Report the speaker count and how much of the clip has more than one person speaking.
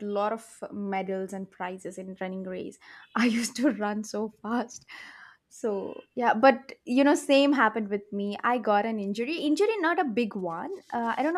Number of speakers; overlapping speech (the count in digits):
1, no overlap